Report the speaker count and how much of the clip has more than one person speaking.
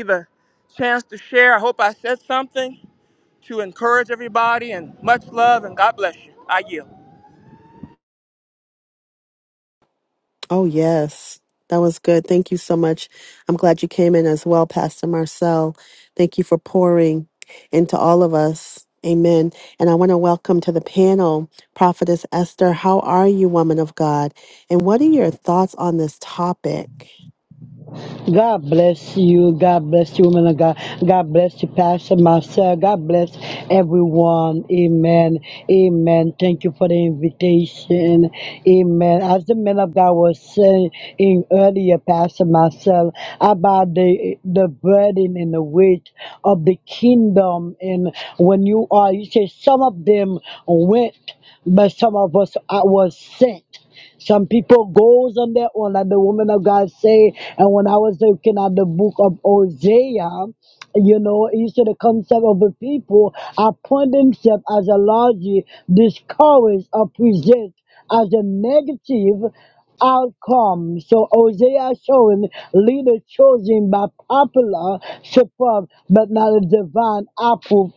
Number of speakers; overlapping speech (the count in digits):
3, no overlap